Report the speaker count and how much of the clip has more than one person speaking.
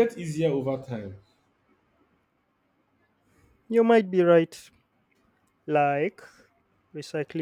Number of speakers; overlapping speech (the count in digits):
2, no overlap